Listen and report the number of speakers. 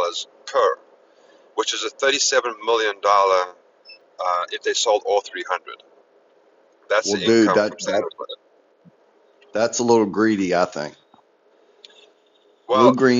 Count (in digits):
2